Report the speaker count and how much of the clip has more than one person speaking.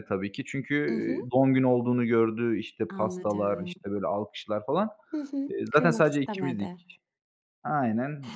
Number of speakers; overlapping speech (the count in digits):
2, about 28%